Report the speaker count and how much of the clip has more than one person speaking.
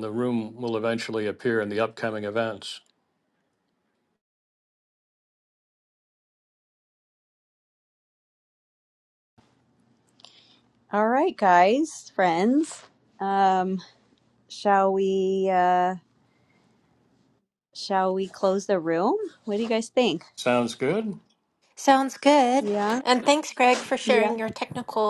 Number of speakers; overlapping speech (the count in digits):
3, about 2%